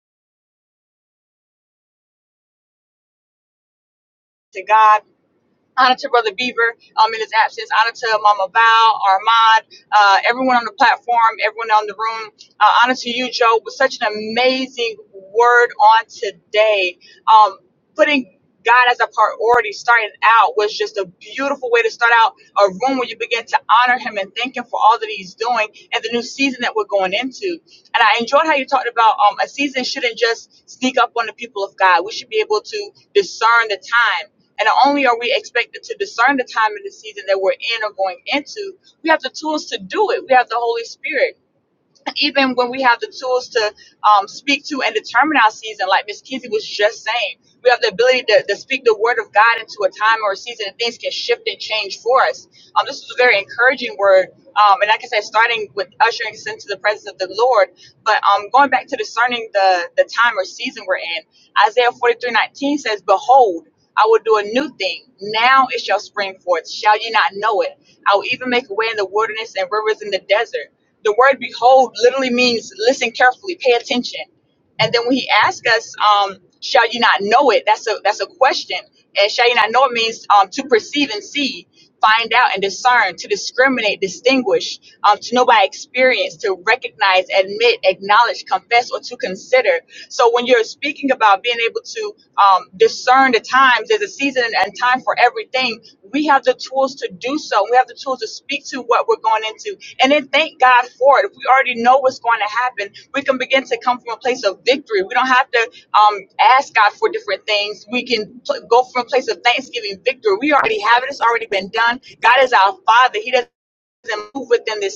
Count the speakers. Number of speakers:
1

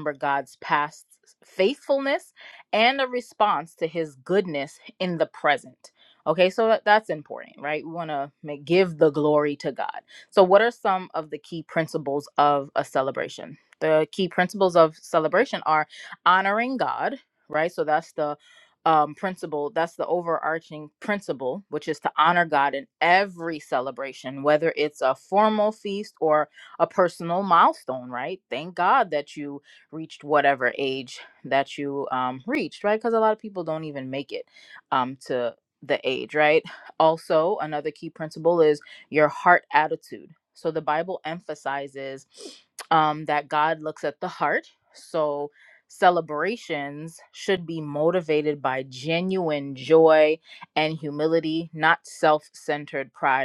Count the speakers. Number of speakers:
1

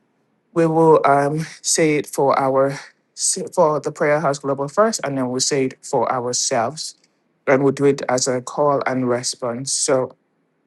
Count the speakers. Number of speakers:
1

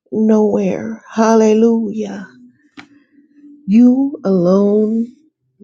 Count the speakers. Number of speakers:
1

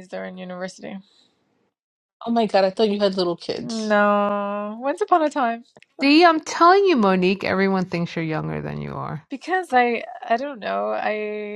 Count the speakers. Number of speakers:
3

